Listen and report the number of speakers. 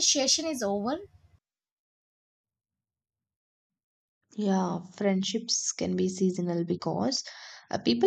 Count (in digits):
2